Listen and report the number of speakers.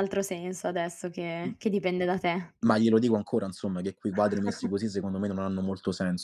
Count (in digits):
2